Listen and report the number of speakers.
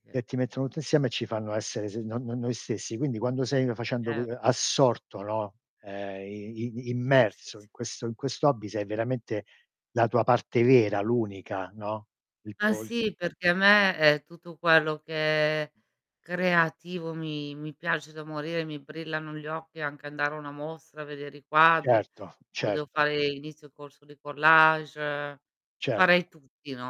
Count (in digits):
2